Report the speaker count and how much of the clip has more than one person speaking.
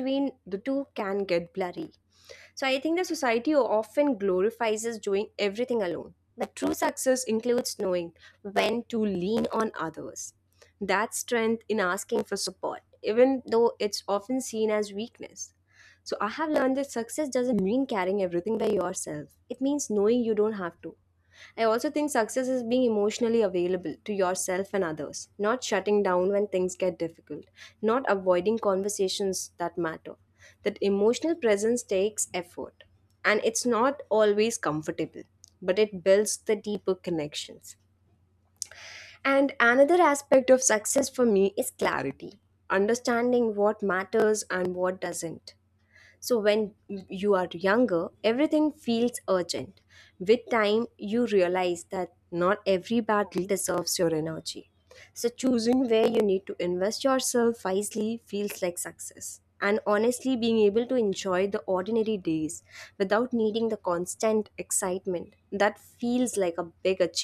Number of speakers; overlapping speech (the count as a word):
one, no overlap